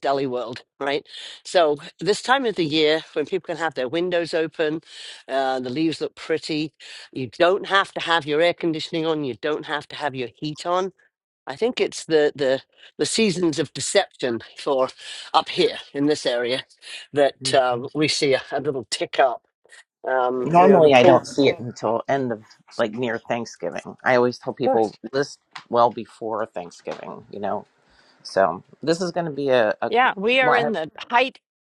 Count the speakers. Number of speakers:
3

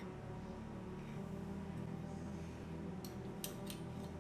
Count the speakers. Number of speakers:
0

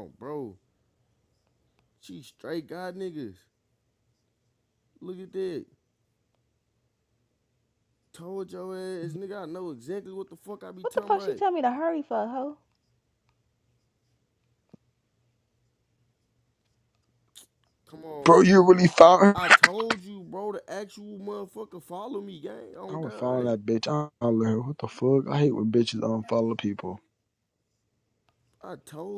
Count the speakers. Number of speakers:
3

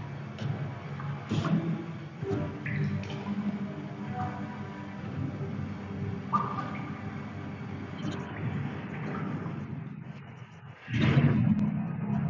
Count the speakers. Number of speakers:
0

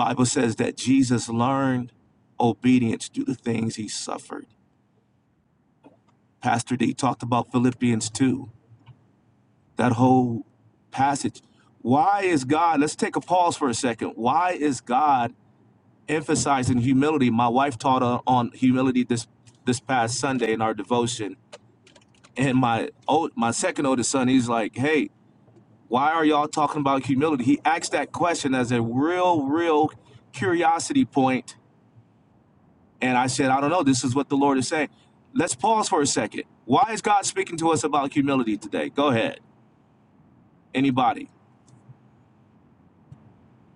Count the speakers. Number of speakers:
1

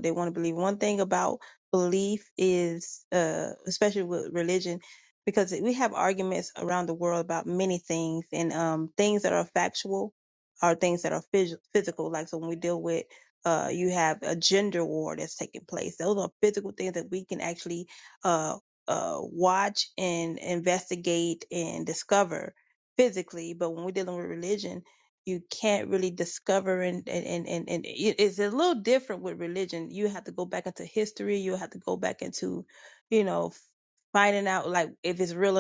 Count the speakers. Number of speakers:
1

